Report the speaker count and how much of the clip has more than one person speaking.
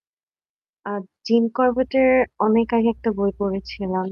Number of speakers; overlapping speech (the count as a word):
one, no overlap